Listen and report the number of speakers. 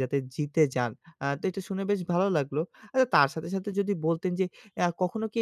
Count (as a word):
one